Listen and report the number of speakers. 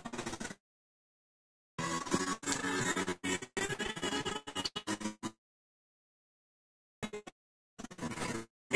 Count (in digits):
0